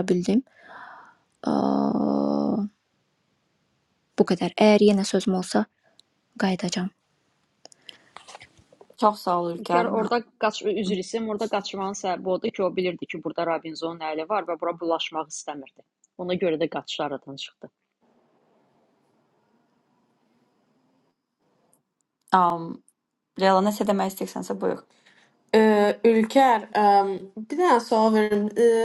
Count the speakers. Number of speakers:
4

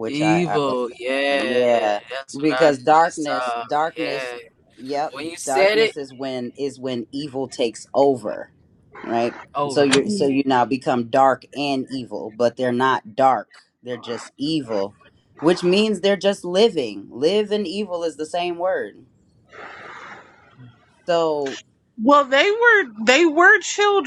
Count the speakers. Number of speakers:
3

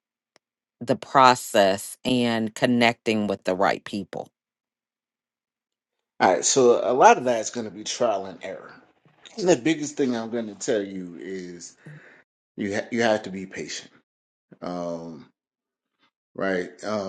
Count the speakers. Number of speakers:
2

